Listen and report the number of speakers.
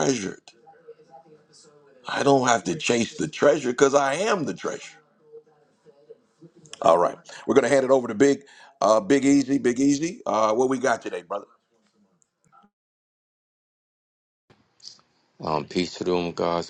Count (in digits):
2